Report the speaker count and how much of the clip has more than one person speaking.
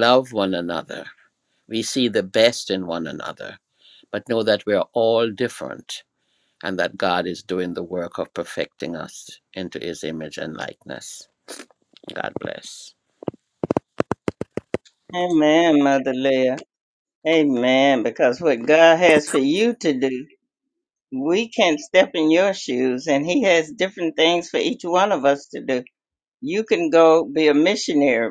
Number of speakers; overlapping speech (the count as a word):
two, no overlap